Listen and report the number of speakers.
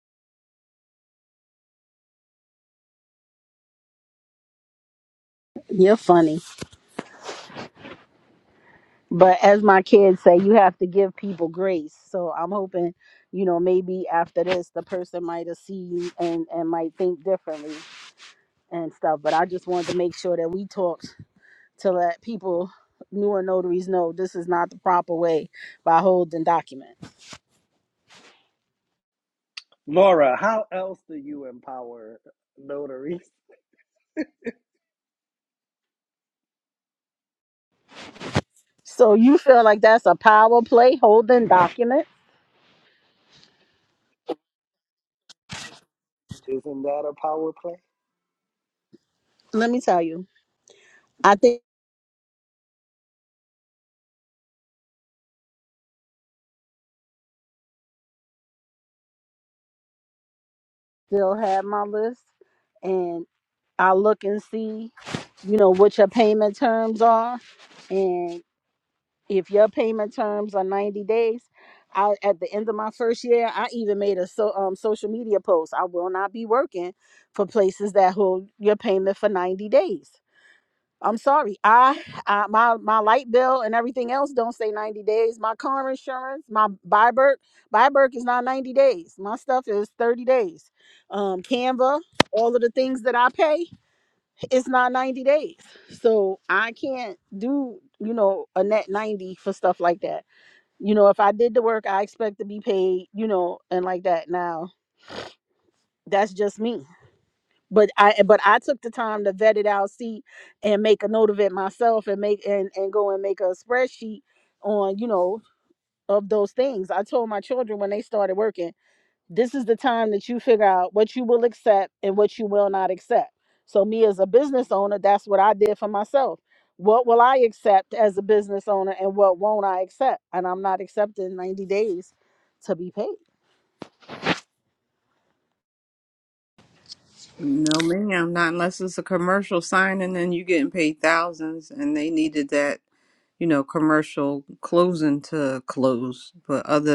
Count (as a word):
three